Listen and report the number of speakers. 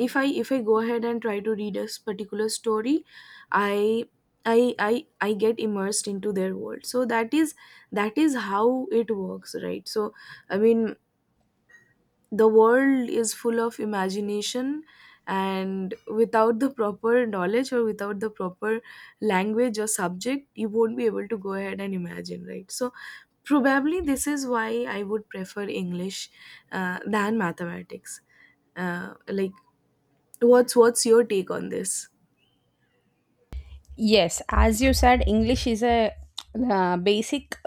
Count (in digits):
2